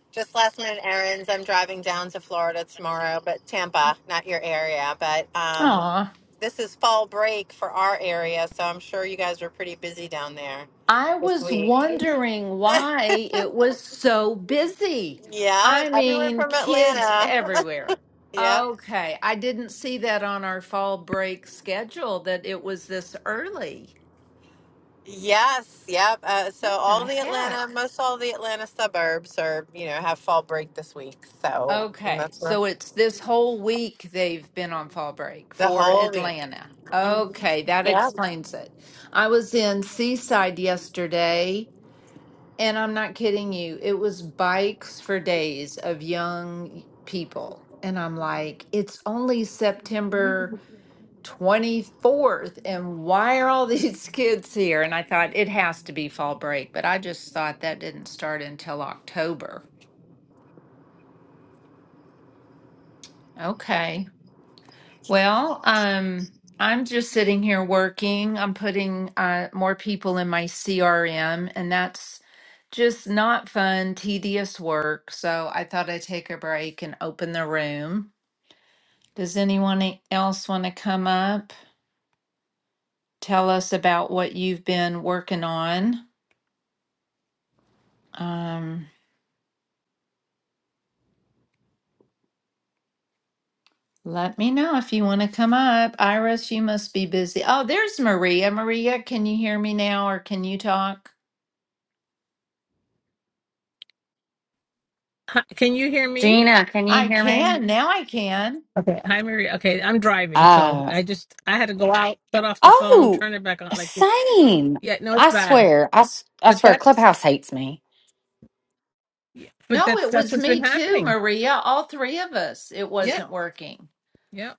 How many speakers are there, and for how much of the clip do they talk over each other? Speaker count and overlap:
four, about 9%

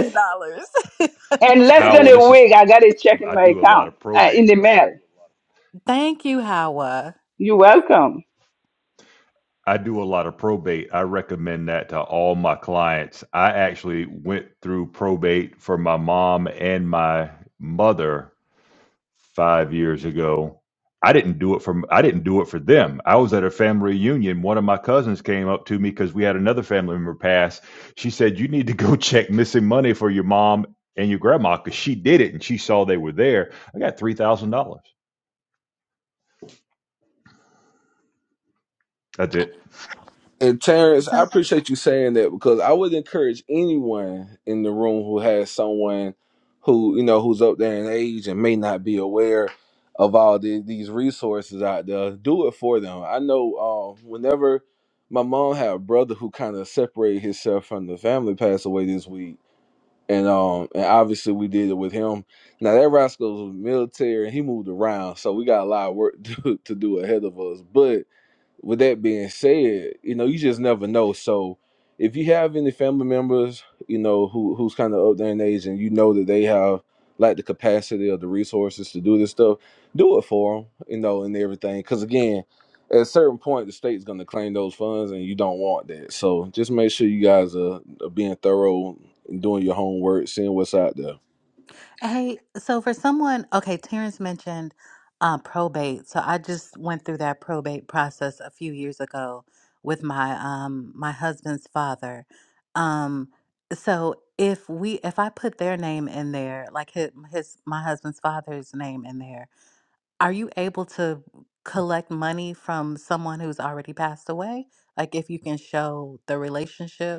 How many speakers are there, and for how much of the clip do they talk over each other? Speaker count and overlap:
four, about 2%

